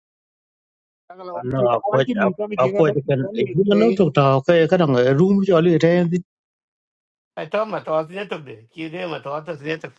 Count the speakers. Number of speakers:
3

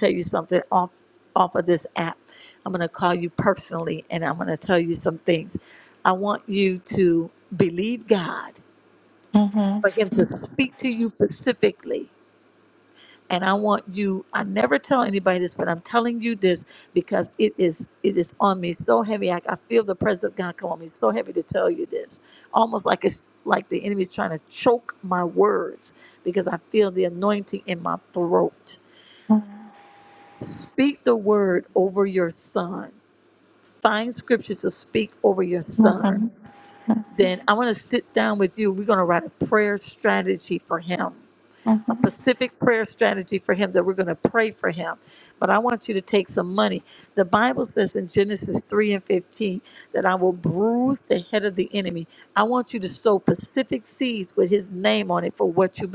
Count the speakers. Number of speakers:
2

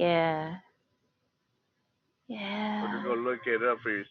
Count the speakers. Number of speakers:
2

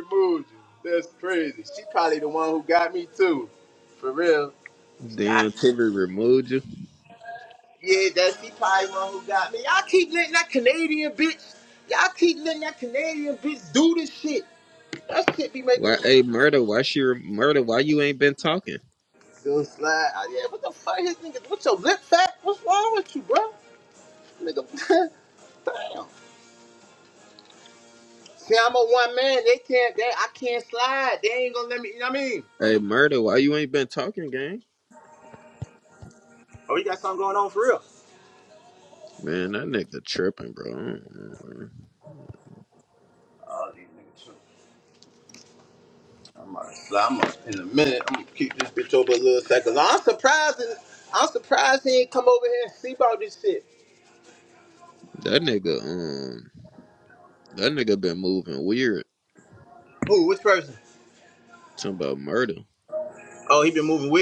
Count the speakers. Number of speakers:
2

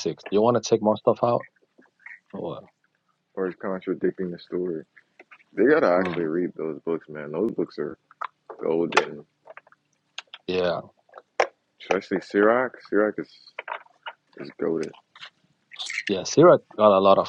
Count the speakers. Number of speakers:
2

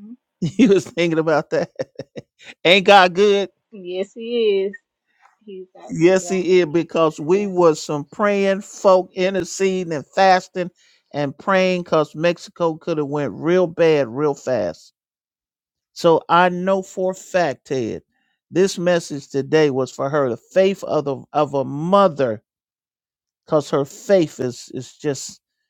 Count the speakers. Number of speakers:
2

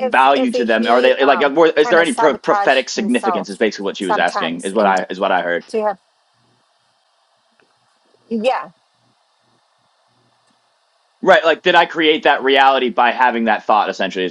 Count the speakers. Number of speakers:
2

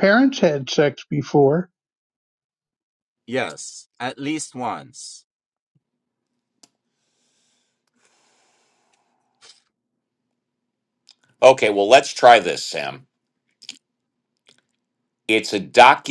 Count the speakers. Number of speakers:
3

